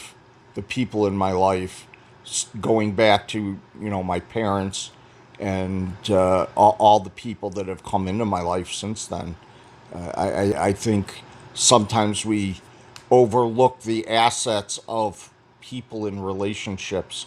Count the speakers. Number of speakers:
one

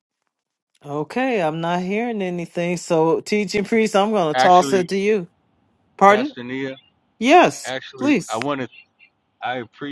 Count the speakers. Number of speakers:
two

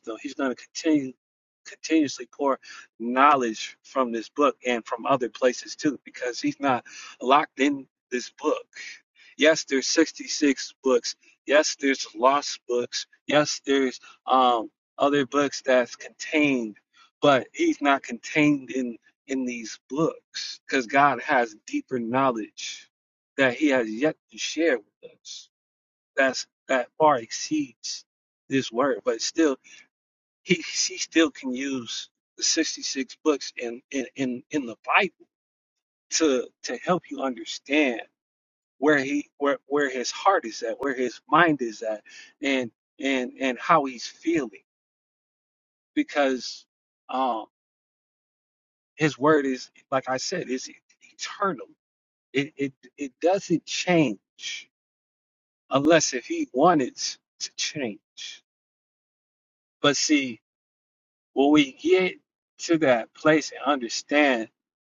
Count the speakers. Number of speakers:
one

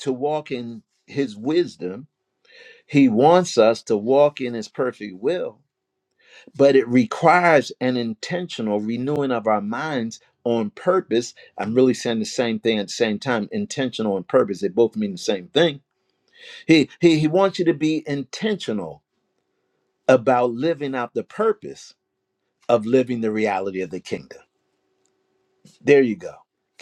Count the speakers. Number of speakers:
one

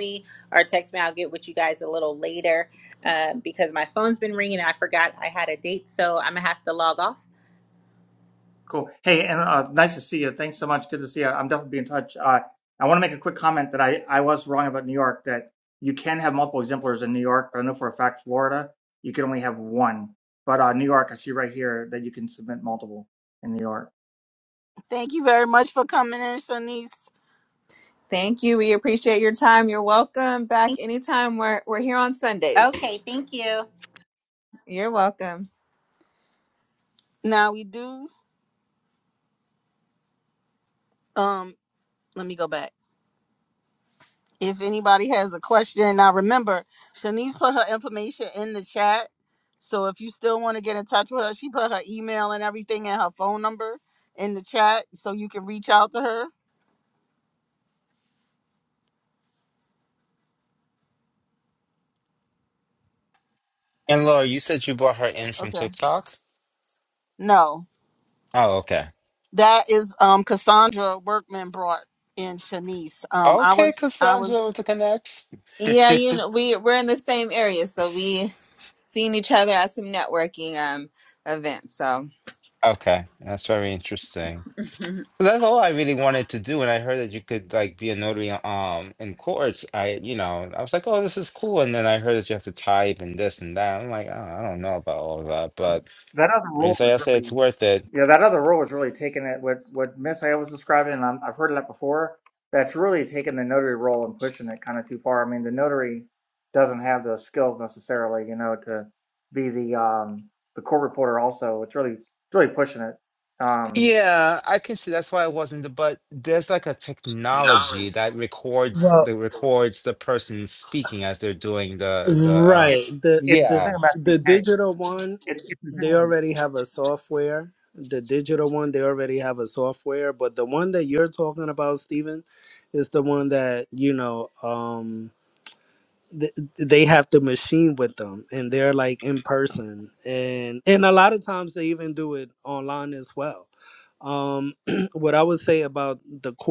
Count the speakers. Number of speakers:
six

